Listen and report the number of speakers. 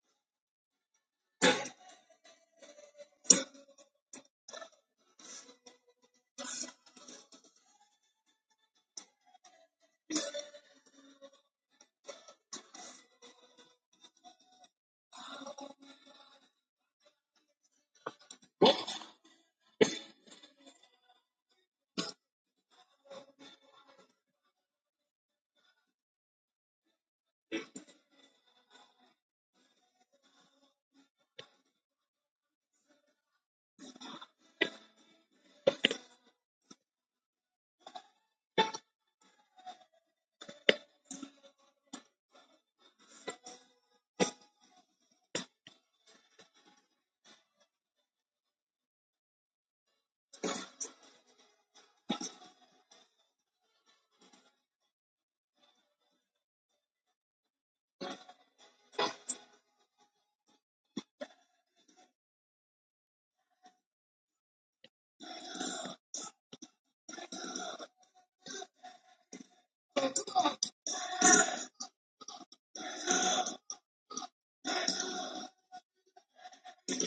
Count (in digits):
0